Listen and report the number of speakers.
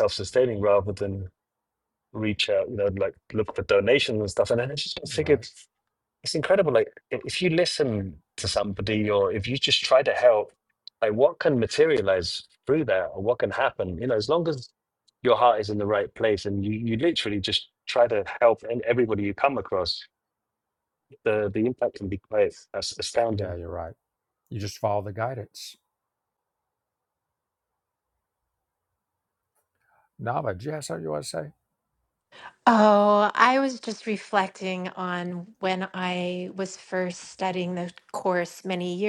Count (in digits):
3